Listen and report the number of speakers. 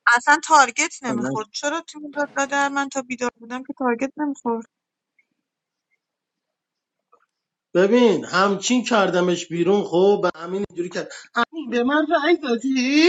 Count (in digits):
2